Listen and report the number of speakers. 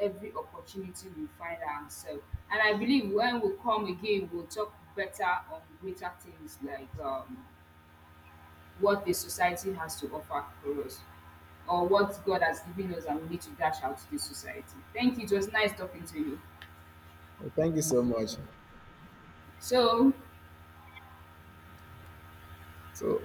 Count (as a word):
two